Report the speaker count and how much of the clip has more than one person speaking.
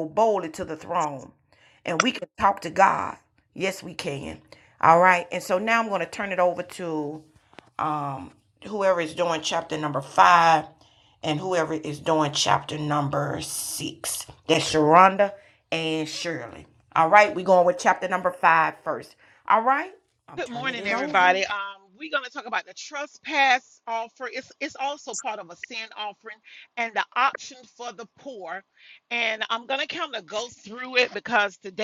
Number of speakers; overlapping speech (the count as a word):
two, about 3%